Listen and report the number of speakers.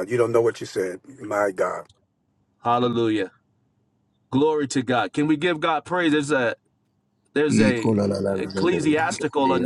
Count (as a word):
three